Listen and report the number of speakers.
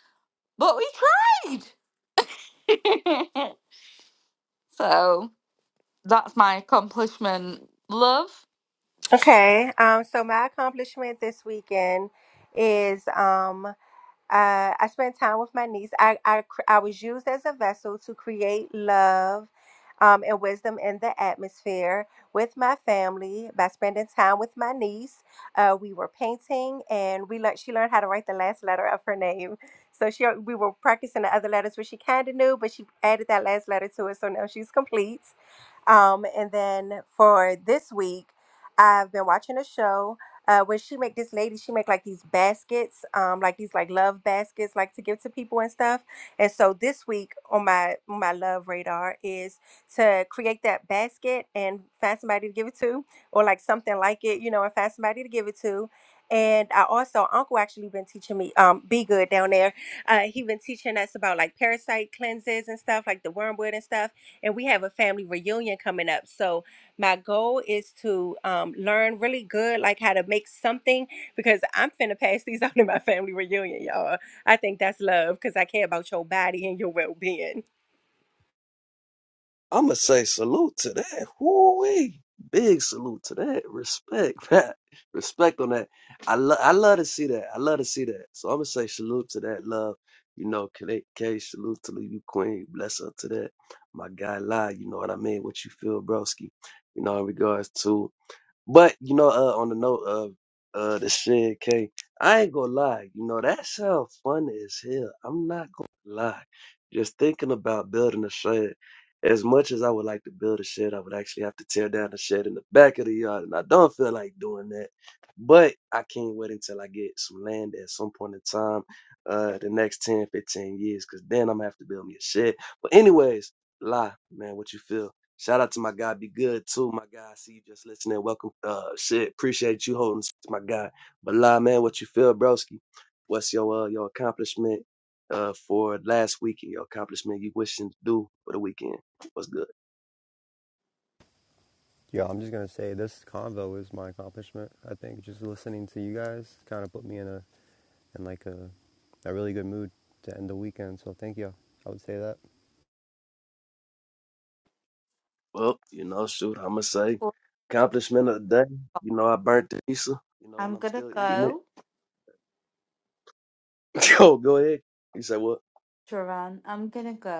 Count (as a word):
four